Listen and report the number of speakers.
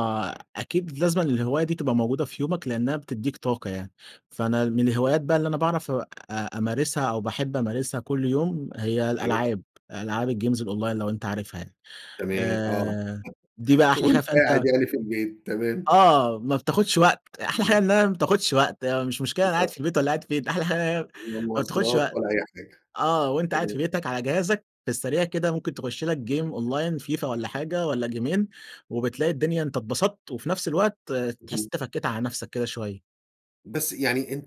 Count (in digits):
2